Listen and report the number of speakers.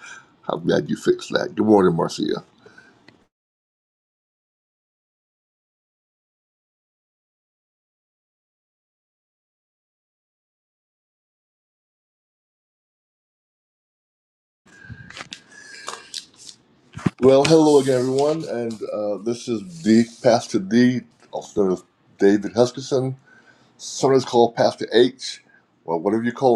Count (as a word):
one